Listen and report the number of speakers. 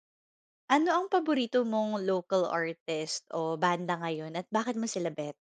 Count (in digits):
1